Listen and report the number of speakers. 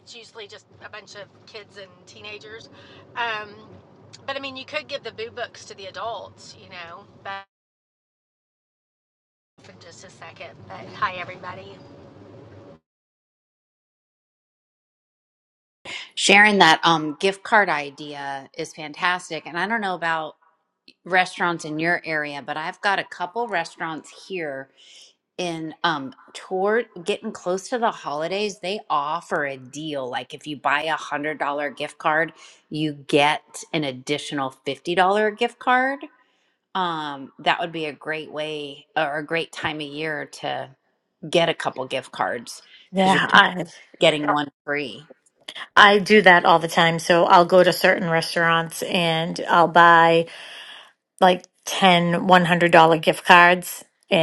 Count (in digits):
3